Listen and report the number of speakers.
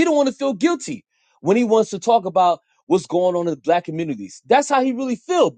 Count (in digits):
1